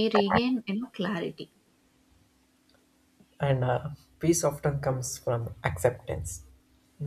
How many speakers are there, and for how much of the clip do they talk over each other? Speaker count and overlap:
2, no overlap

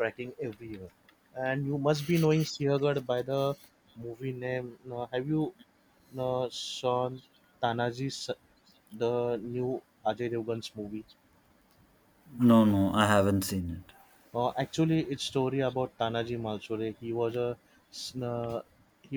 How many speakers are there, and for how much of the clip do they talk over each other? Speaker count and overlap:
2, no overlap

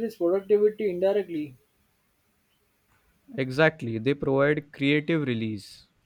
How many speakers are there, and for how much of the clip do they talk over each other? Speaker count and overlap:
2, no overlap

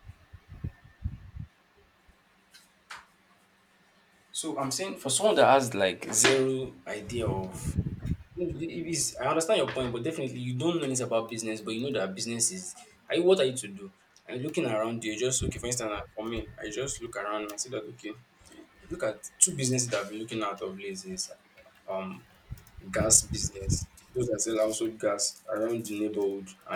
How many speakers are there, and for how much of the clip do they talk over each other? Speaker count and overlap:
1, no overlap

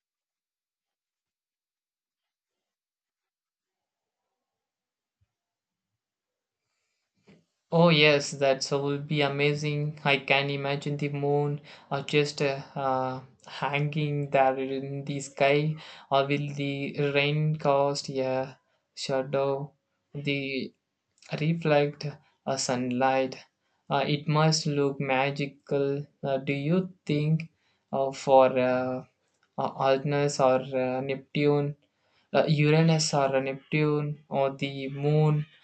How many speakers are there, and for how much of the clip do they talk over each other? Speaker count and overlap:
1, no overlap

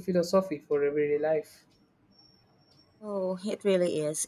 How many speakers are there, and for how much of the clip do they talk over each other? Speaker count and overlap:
2, no overlap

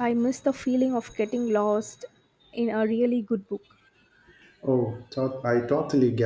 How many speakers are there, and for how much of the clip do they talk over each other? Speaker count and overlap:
2, no overlap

